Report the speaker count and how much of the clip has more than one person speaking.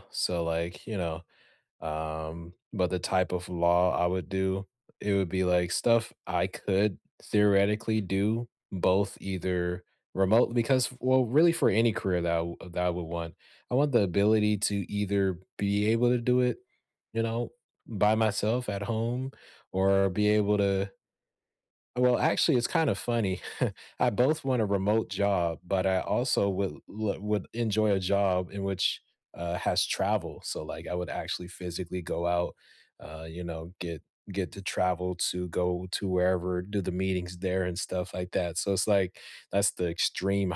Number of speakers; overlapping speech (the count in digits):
1, no overlap